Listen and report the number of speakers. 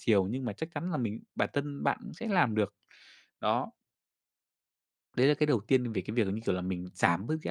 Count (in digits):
1